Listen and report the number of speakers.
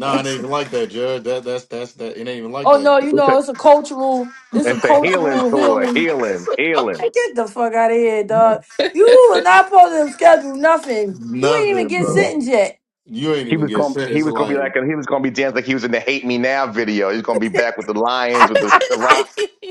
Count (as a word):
three